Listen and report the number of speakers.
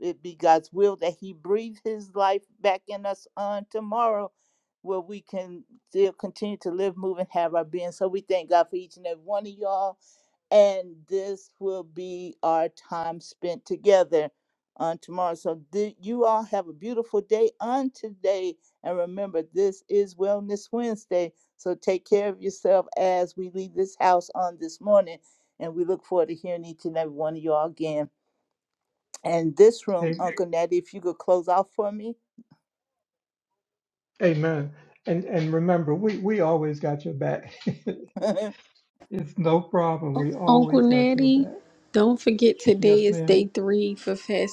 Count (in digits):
3